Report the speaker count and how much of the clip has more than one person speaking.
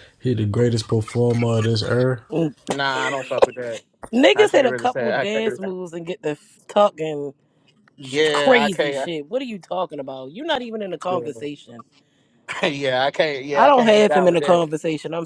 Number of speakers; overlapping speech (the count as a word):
three, about 23%